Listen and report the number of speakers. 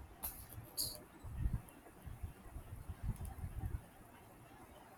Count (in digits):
0